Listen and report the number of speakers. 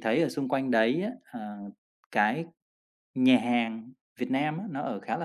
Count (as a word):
one